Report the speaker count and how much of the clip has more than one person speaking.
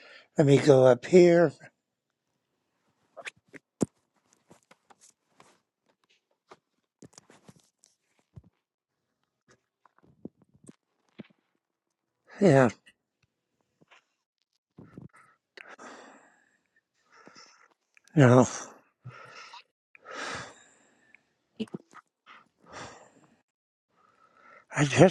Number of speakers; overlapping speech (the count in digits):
1, no overlap